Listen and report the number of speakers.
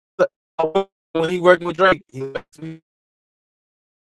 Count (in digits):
1